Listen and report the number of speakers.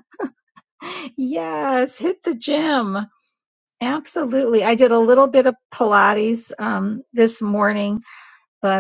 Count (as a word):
one